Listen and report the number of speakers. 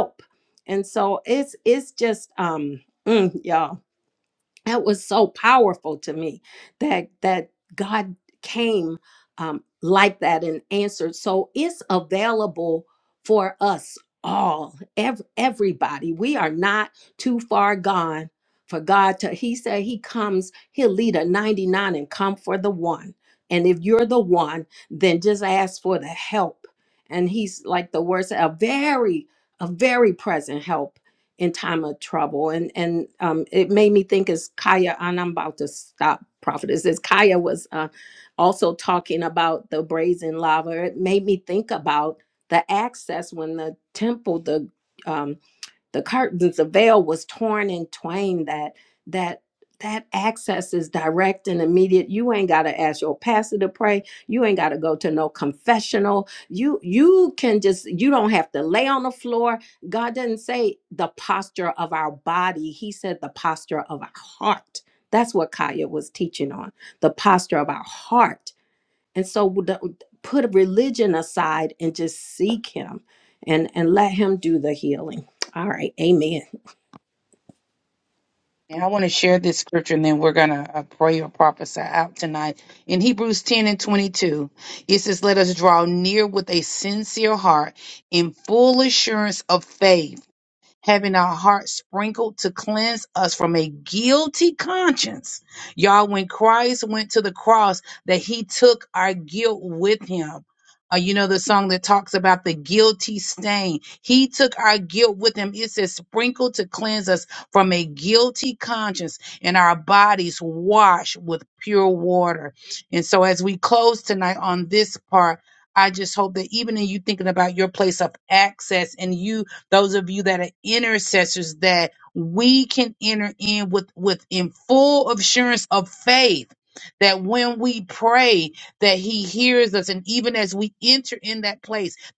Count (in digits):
2